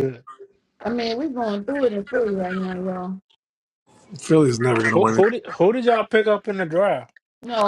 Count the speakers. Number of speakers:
3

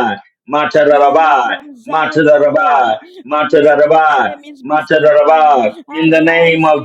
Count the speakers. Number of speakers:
2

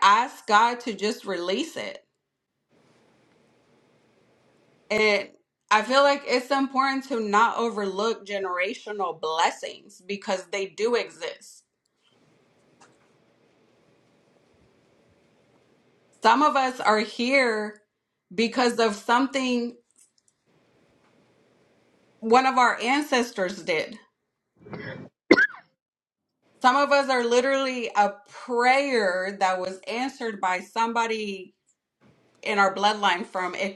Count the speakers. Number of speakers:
1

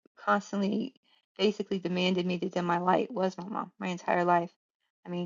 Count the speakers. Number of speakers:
1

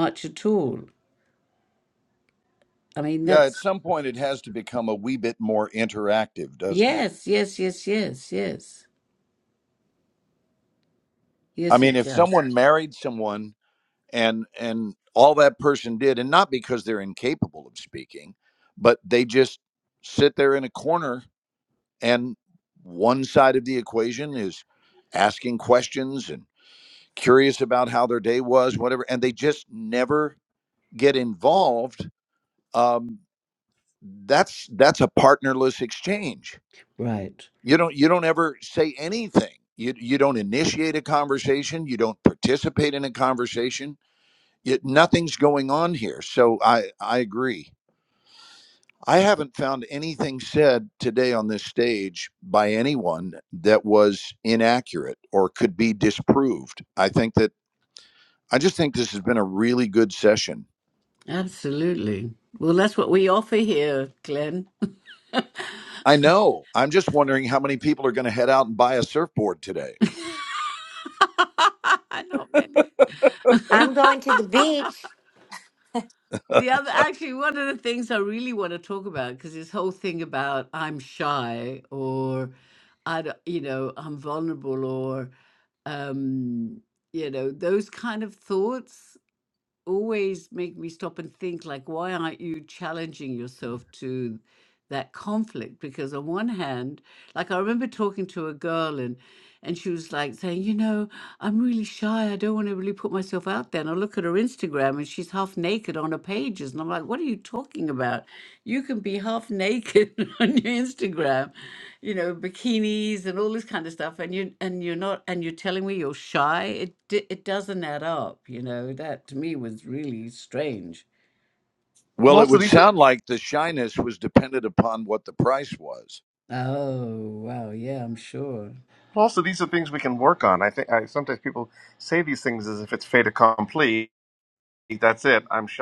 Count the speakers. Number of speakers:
4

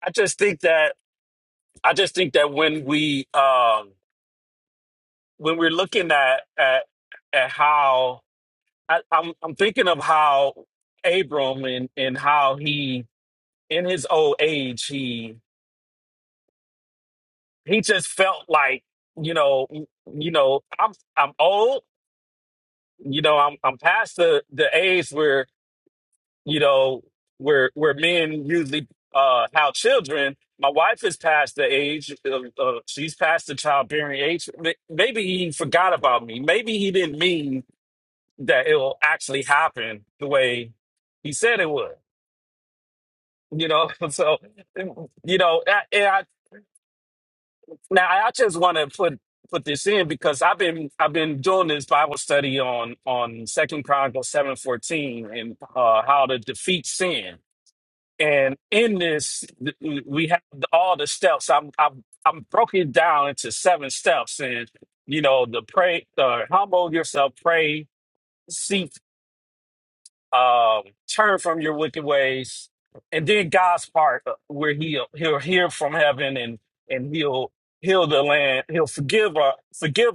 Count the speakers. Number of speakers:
1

